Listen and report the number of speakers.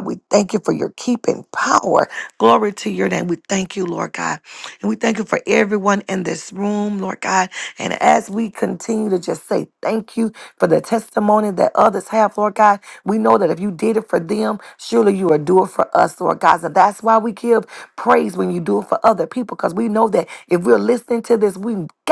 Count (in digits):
1